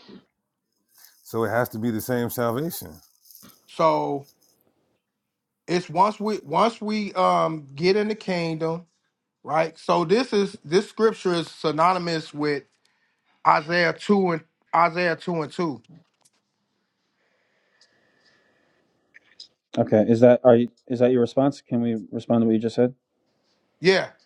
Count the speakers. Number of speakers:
3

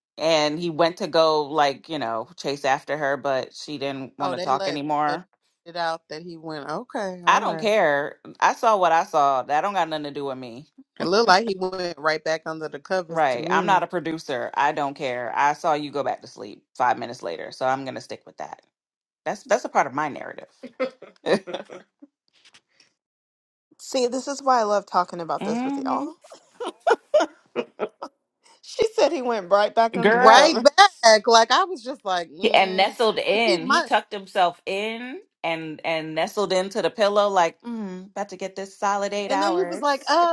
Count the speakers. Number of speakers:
3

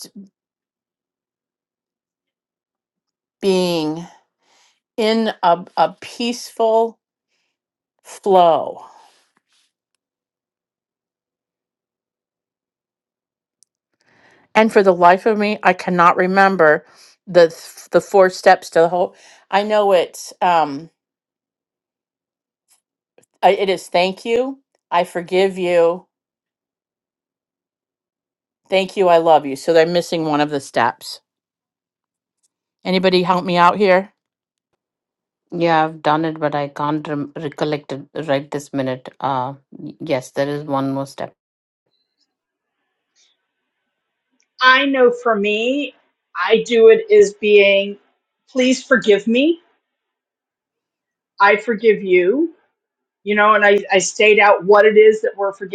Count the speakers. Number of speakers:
3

